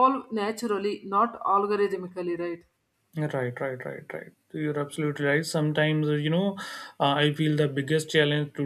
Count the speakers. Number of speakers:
2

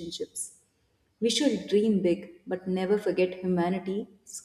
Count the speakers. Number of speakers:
1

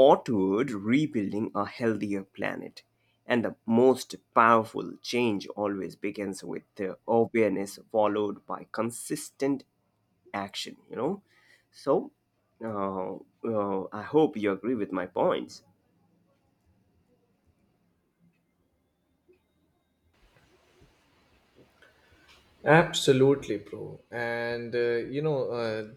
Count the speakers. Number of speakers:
2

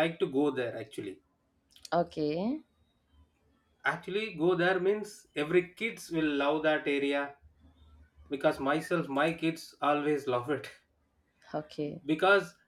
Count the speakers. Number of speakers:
2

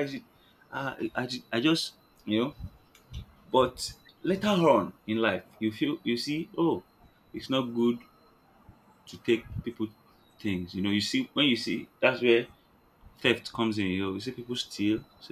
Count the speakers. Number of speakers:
1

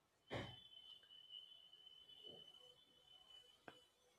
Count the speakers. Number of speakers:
0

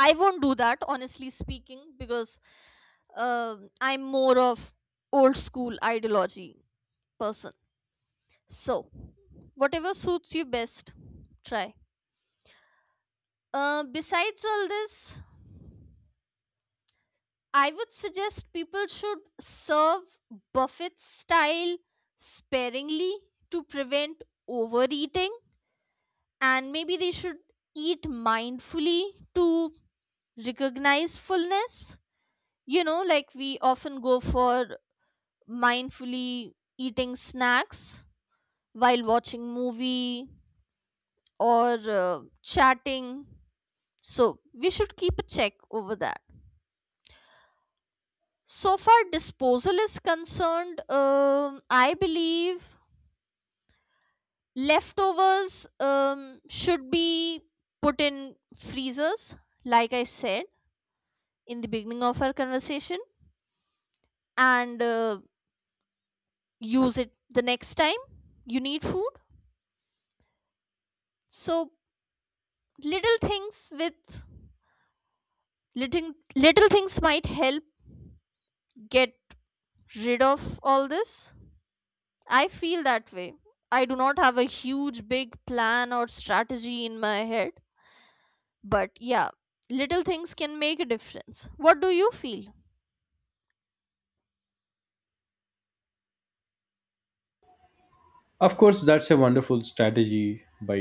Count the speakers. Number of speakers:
2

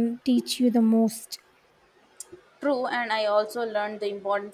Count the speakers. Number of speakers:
2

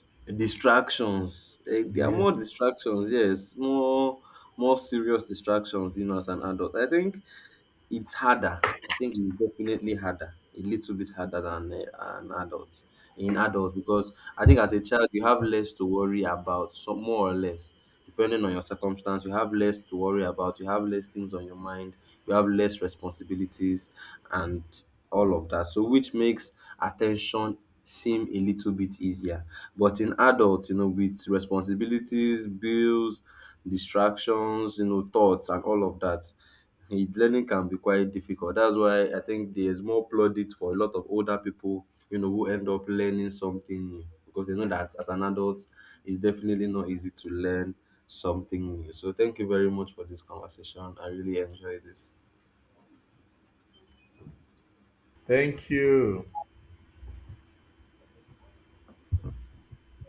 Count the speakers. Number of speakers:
2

